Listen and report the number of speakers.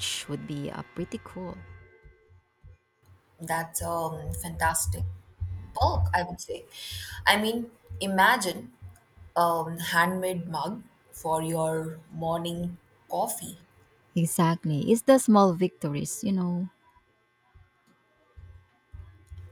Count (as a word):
two